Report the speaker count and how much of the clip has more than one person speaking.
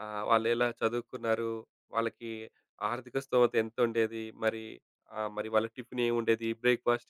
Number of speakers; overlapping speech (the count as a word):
one, no overlap